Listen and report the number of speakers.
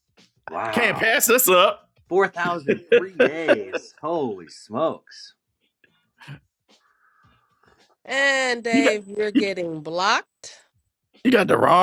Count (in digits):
3